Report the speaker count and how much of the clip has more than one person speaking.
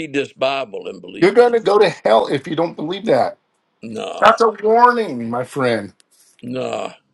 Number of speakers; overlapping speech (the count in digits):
2, about 5%